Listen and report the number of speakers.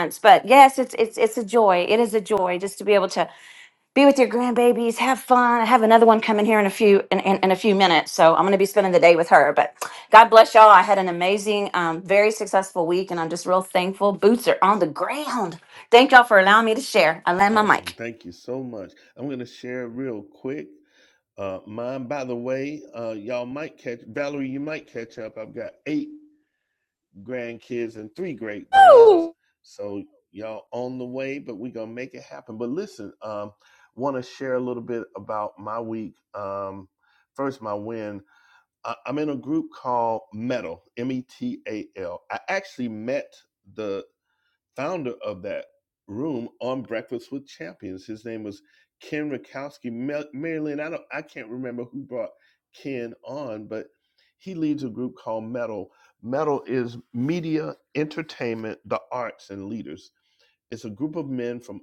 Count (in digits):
2